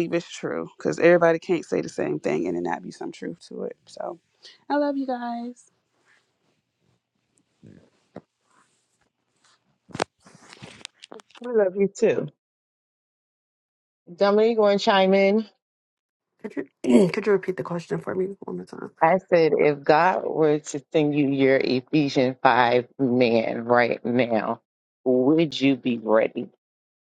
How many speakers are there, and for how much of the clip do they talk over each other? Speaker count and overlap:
three, no overlap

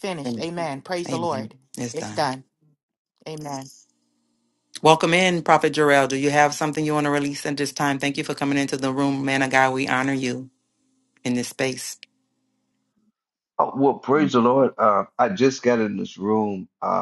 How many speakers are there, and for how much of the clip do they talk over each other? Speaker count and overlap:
three, about 5%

